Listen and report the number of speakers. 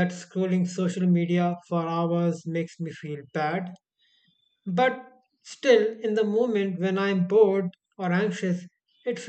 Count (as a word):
one